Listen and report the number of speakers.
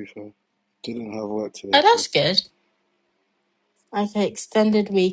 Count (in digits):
2